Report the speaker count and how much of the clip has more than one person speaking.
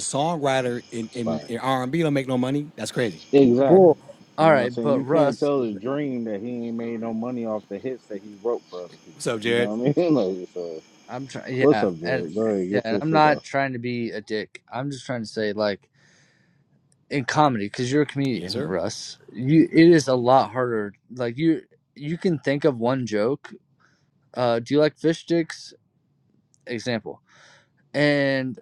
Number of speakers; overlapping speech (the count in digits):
3, about 12%